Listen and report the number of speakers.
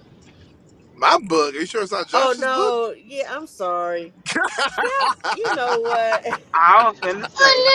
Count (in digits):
3